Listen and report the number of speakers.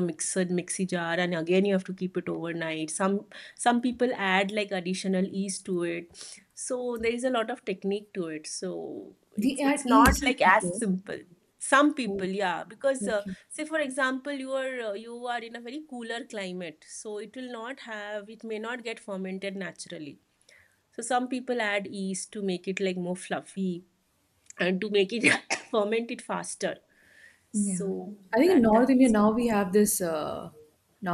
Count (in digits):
2